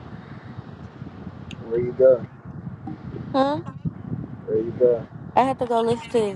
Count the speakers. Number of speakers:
2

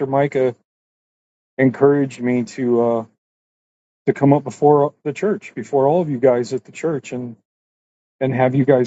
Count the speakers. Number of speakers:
1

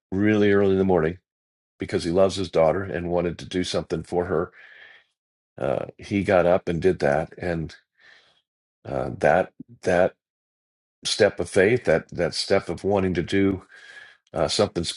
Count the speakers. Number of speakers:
1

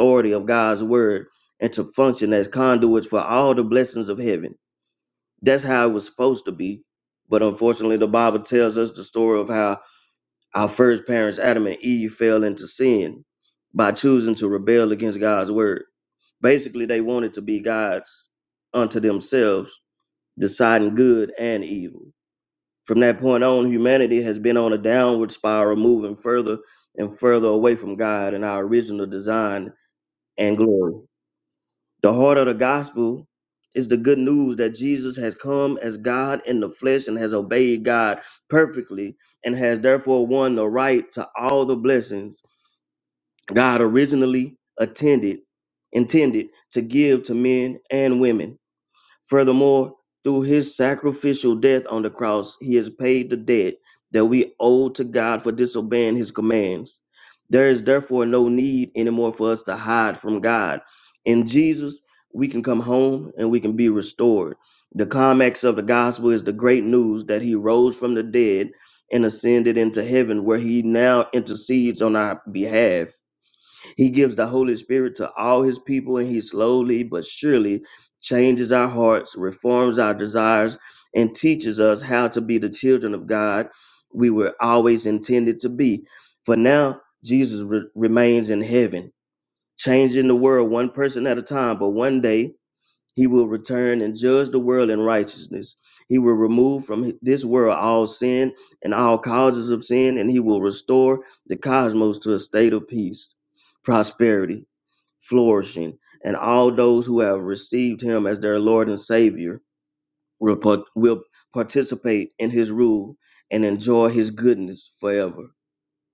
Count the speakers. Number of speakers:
1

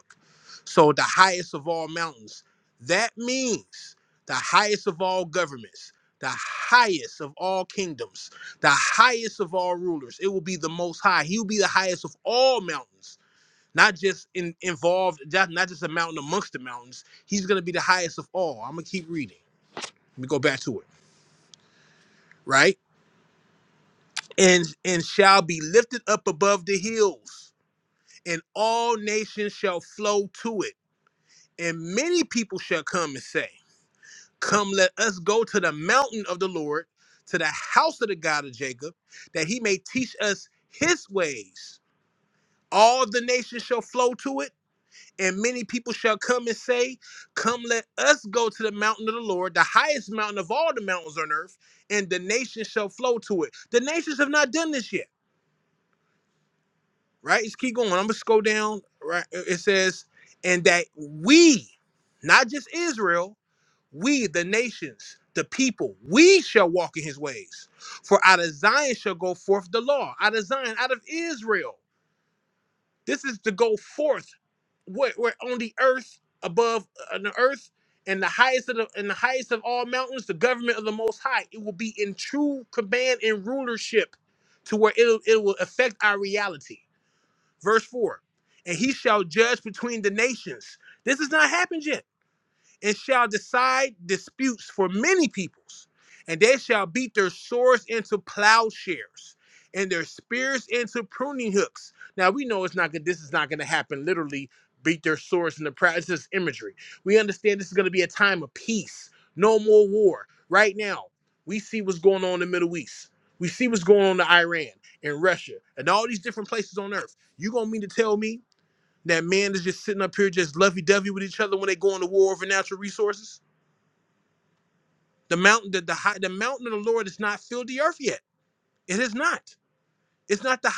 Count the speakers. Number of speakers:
1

